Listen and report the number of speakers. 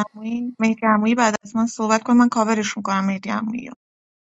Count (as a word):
one